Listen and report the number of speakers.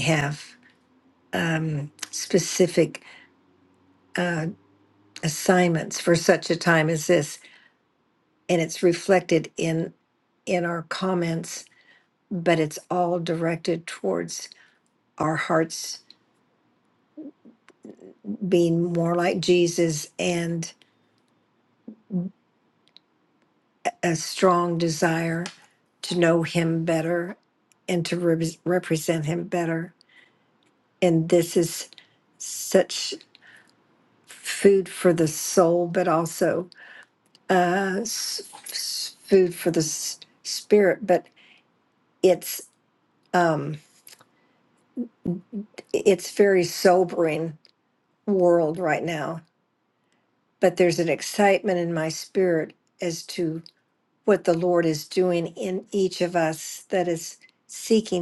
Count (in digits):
1